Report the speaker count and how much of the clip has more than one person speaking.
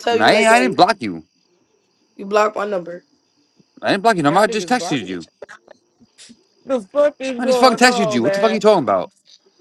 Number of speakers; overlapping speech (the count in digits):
3, about 30%